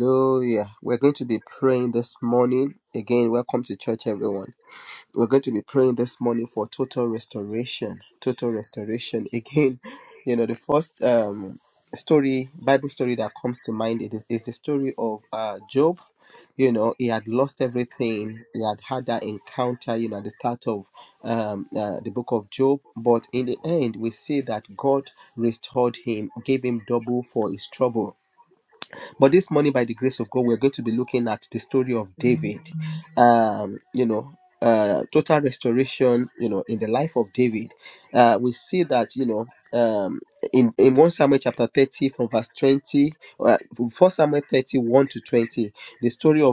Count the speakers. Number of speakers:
one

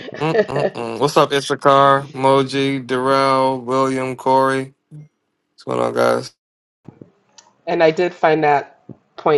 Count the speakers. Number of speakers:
two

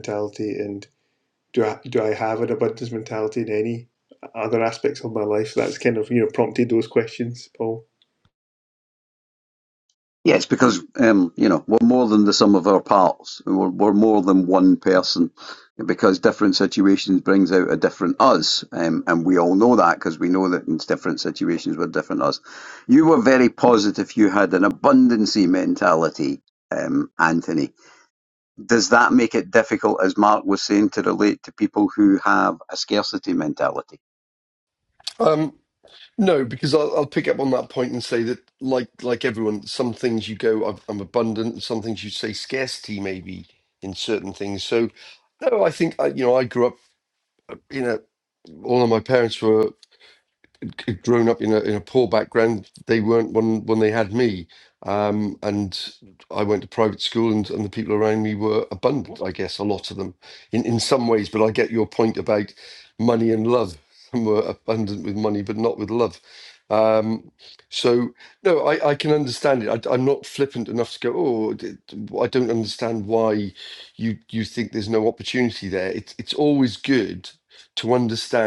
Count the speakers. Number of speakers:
three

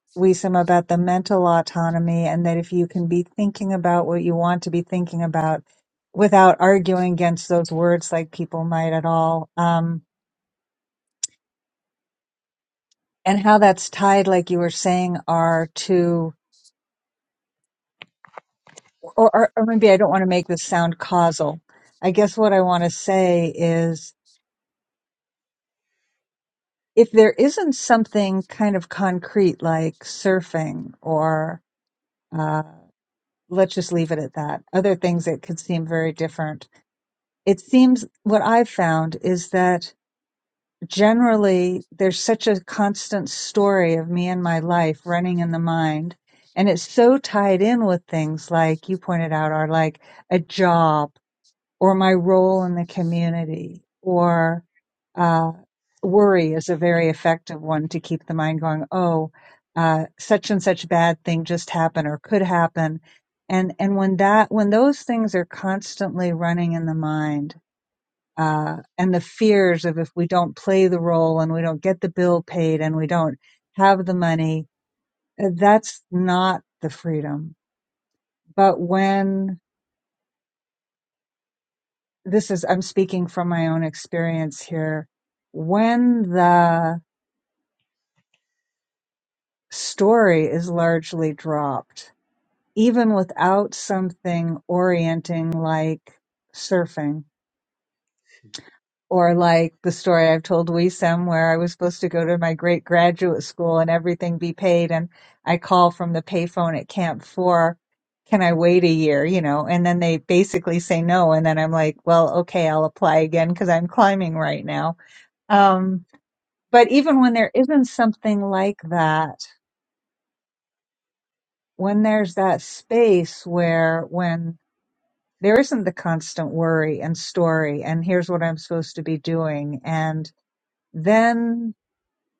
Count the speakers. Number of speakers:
one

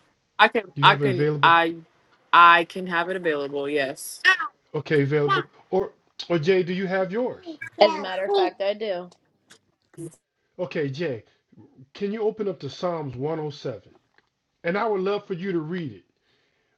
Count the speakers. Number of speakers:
three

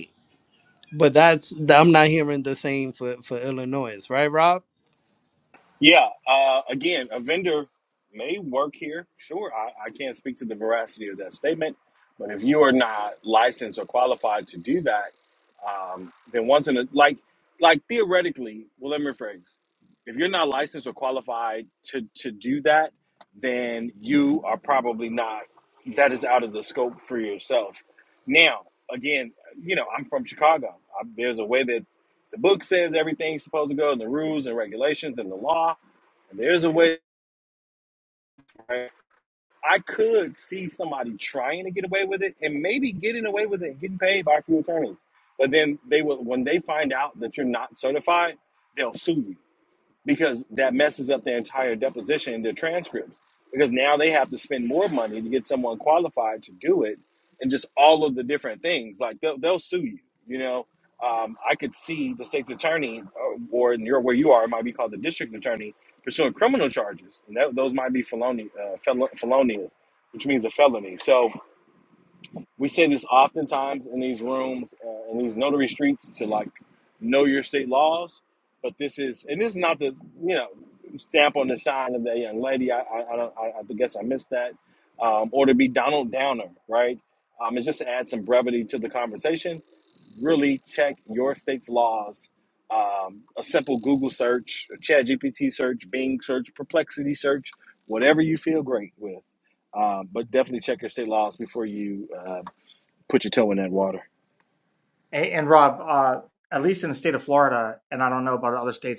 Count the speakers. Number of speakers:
three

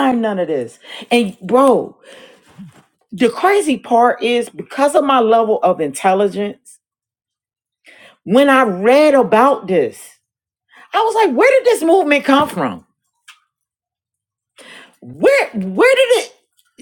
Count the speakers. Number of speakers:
one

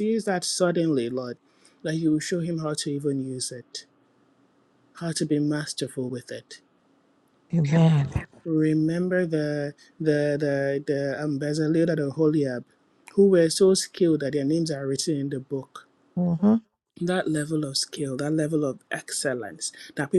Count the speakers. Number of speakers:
two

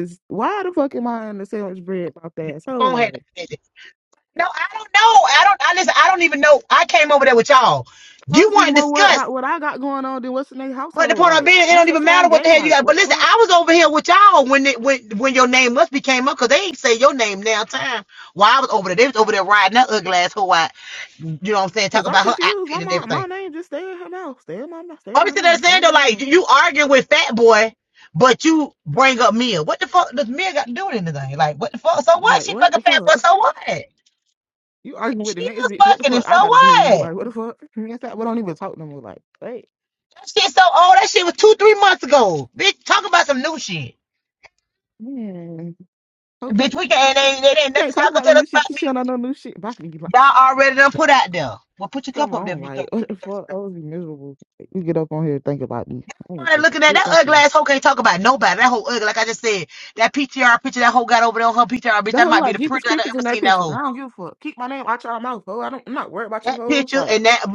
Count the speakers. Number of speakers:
two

